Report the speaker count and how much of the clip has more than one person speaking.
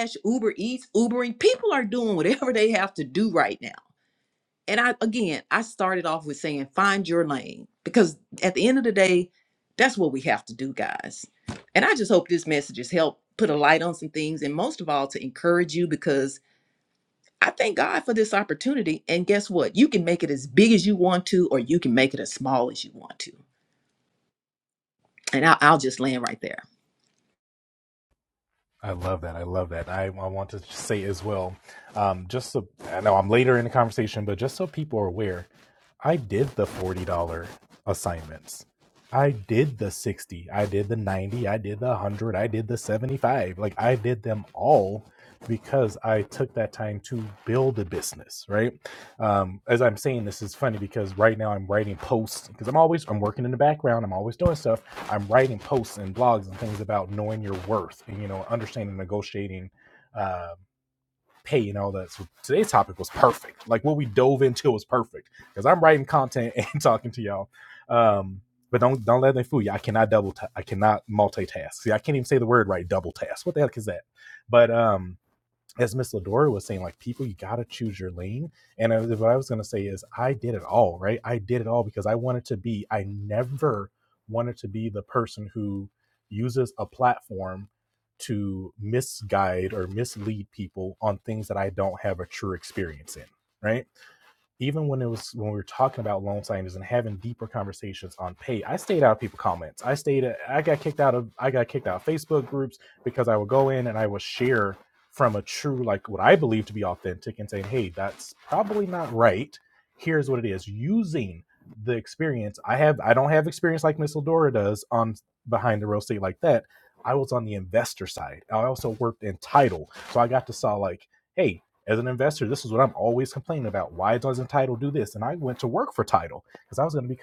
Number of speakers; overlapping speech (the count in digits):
2, no overlap